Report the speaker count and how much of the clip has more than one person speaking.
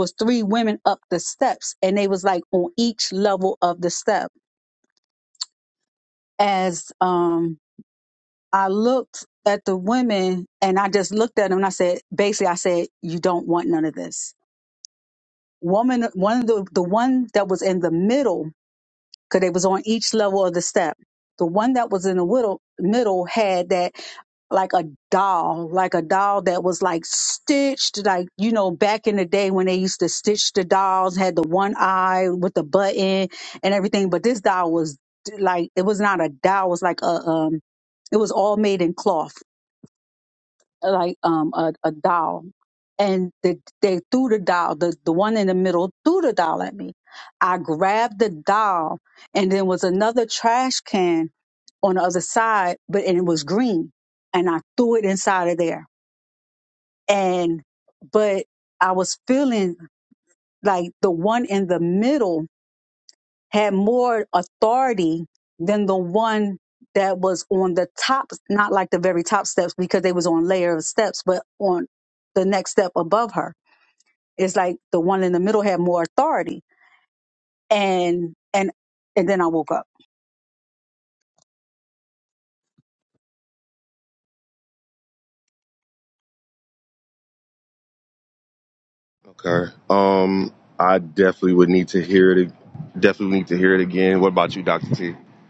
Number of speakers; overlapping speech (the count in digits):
2, no overlap